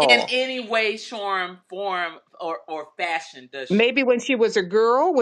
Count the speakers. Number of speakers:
2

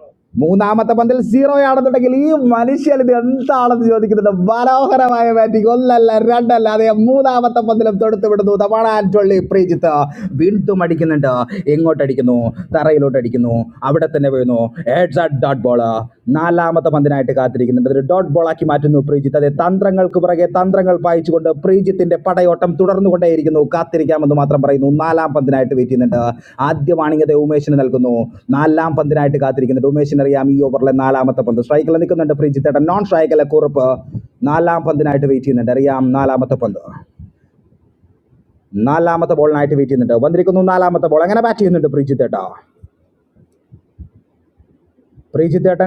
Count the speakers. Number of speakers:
1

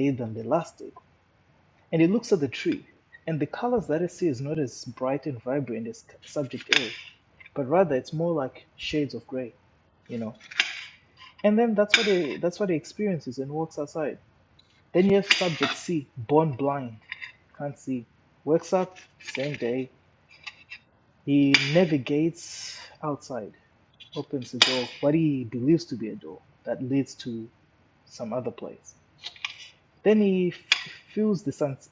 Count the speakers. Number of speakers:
1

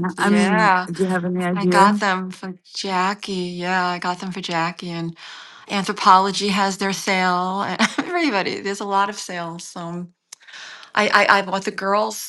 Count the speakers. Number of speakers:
2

